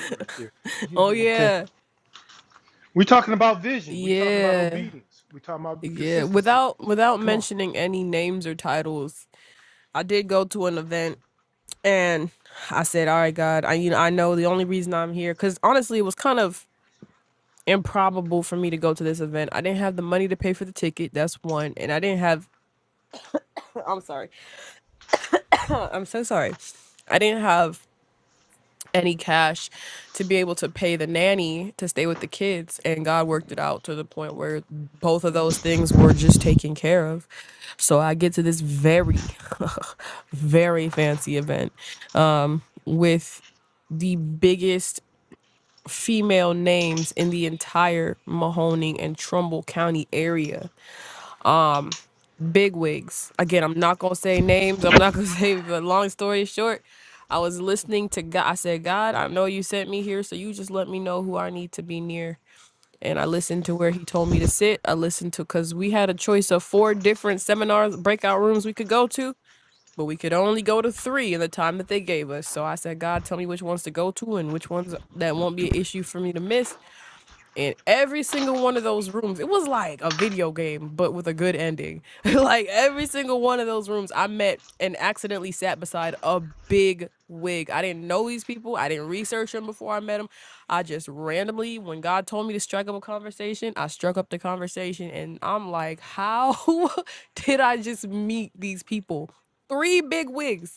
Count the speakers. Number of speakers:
two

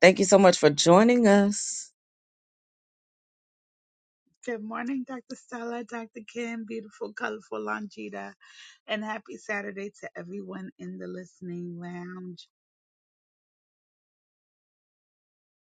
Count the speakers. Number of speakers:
two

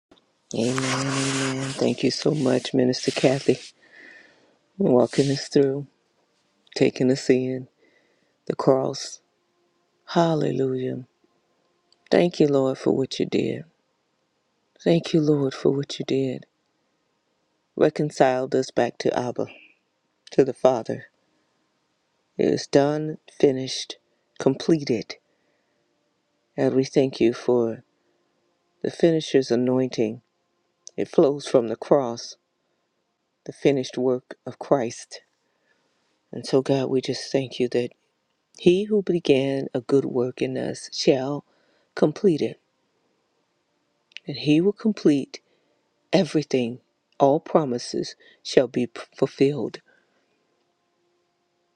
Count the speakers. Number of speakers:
one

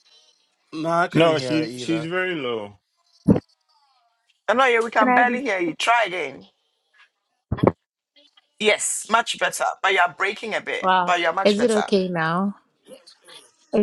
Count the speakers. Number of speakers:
four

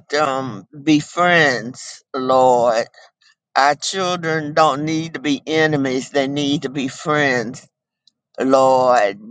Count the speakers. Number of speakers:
one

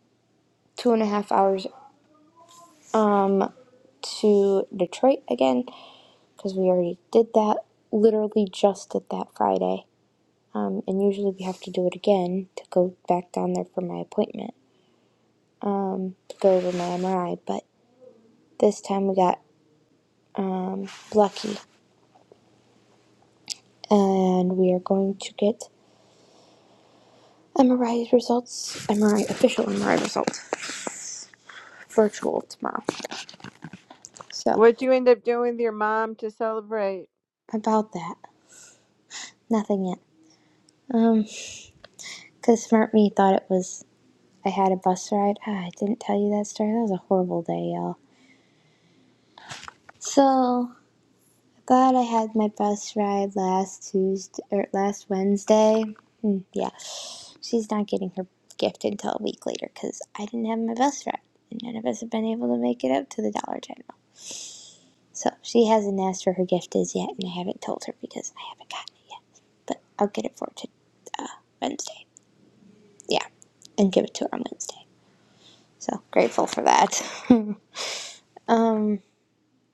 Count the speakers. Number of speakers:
two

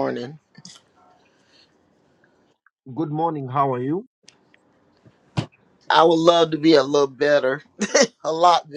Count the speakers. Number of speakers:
two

